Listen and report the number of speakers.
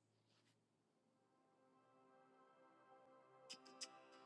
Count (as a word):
zero